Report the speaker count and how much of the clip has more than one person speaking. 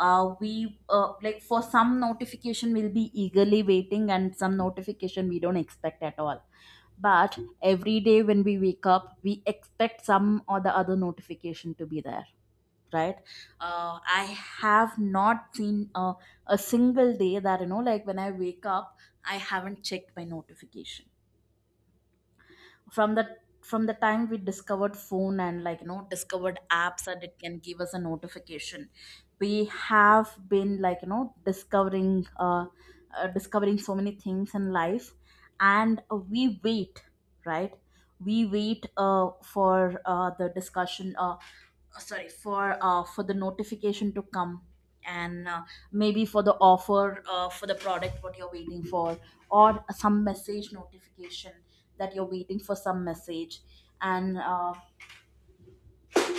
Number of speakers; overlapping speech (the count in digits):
1, no overlap